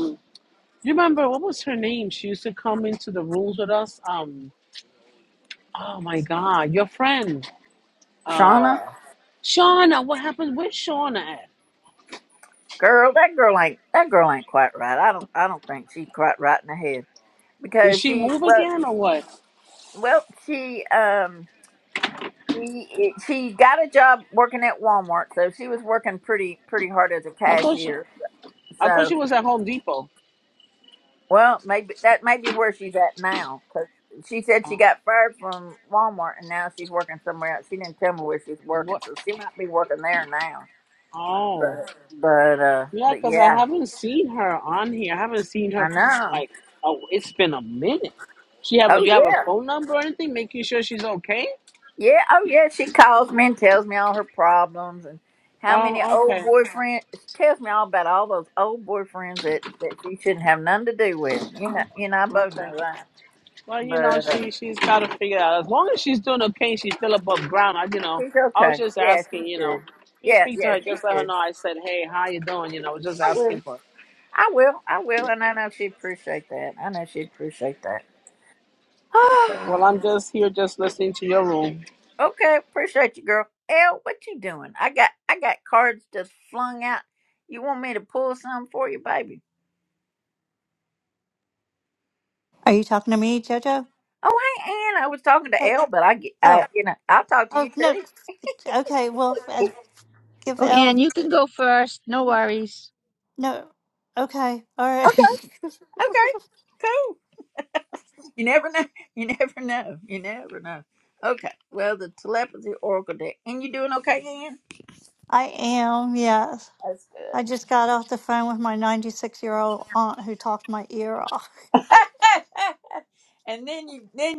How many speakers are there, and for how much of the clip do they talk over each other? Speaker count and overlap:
4, about 8%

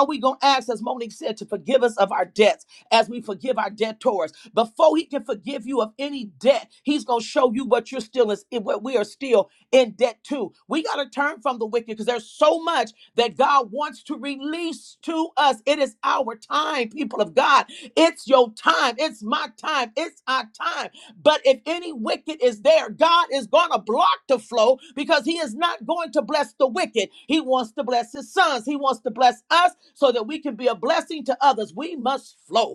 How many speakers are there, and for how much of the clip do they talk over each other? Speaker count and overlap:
1, no overlap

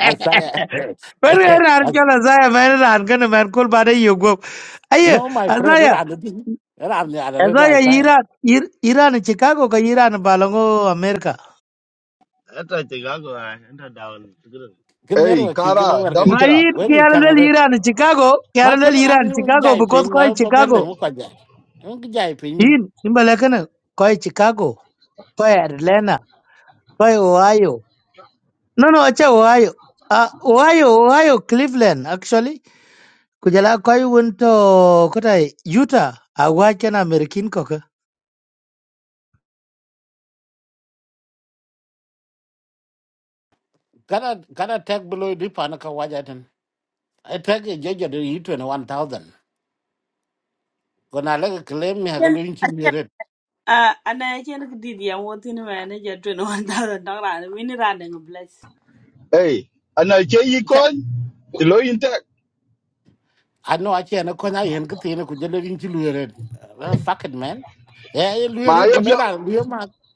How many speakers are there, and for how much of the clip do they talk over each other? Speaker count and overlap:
5, about 10%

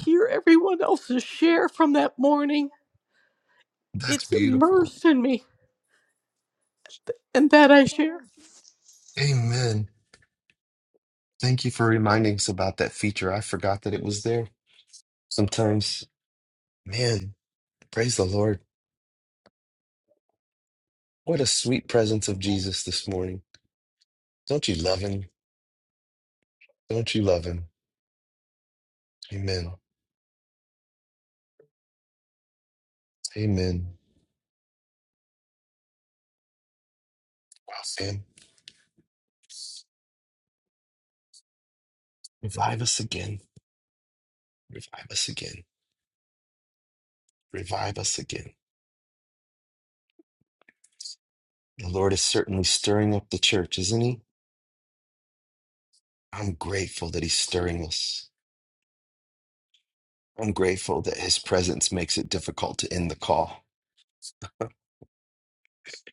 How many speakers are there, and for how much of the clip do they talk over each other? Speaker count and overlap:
2, about 1%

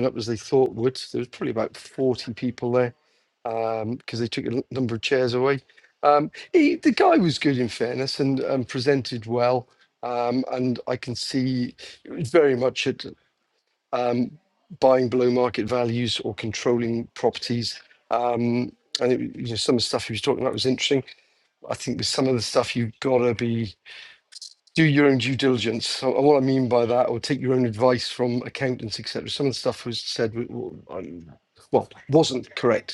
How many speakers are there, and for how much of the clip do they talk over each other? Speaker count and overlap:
1, no overlap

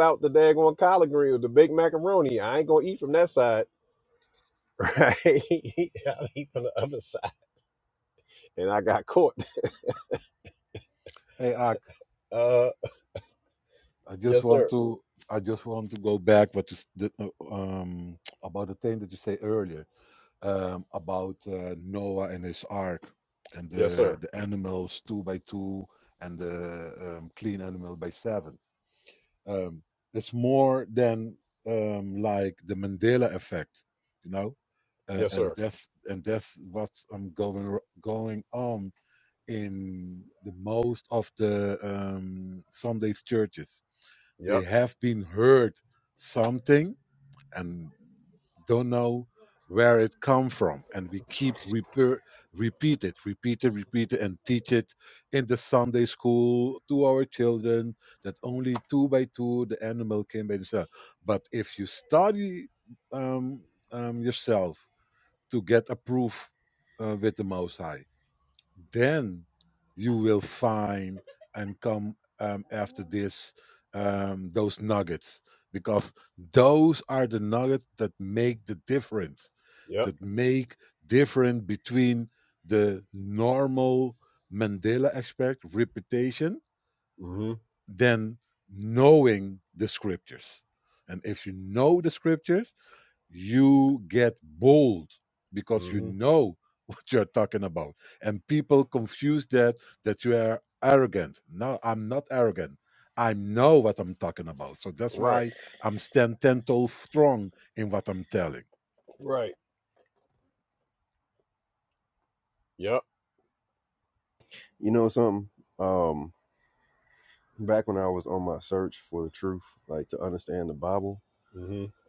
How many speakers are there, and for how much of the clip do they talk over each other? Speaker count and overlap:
3, about 2%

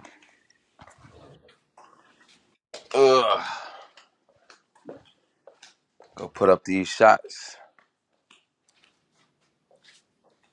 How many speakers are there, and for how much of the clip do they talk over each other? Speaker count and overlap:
1, no overlap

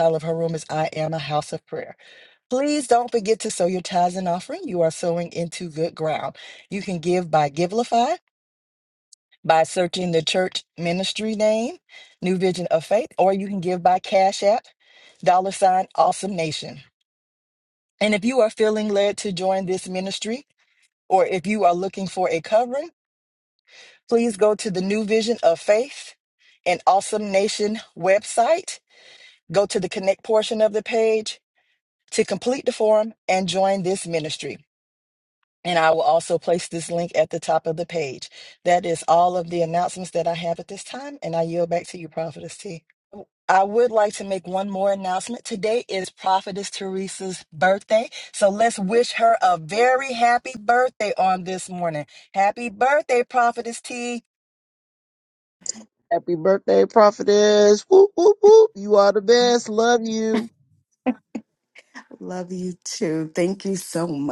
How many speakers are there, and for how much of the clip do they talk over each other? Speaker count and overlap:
3, no overlap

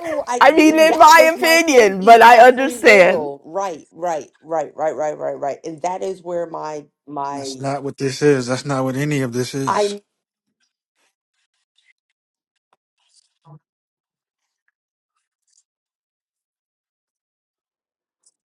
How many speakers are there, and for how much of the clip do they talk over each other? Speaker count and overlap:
3, about 17%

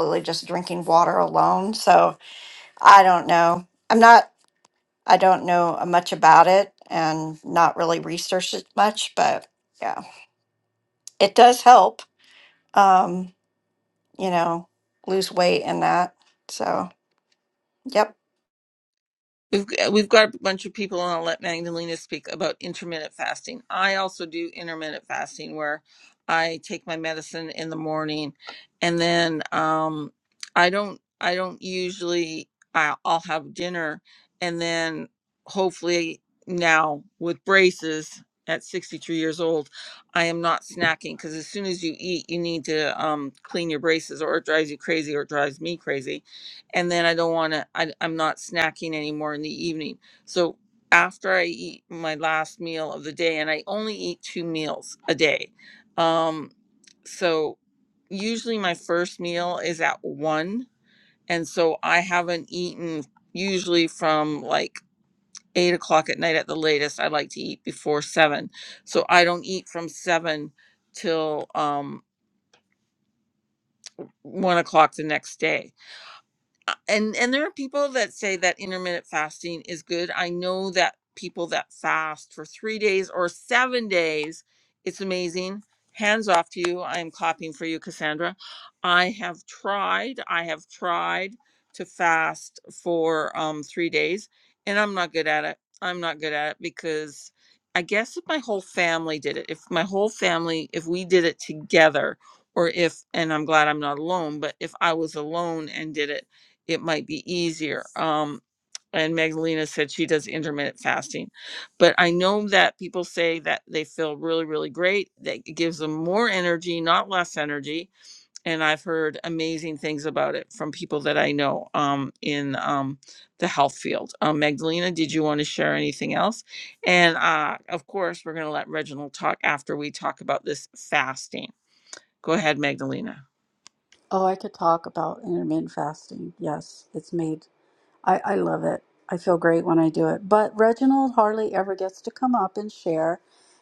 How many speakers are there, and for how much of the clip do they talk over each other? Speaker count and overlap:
3, no overlap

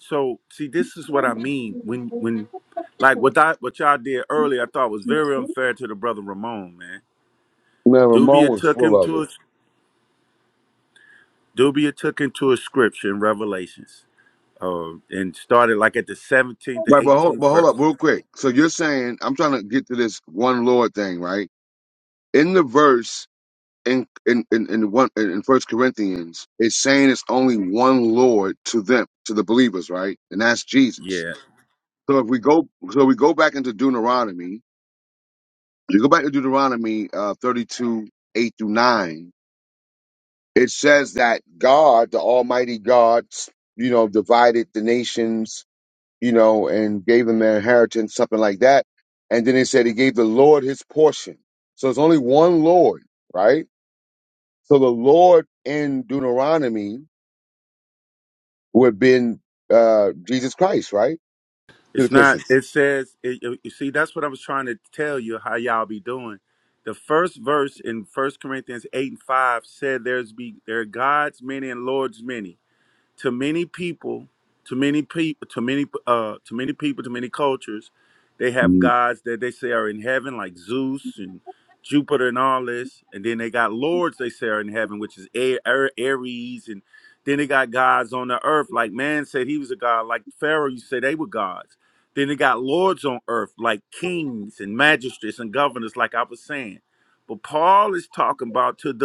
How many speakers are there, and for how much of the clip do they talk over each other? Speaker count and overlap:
2, about 3%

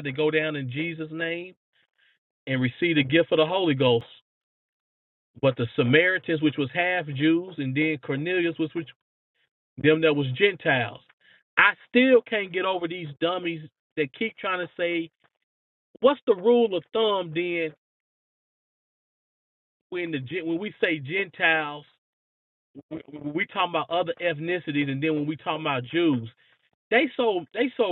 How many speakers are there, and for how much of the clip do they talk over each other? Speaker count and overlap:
1, no overlap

